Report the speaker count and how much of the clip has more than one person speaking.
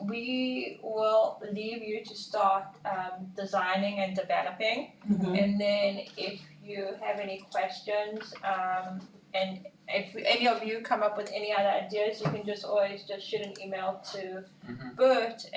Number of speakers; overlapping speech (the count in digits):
1, no overlap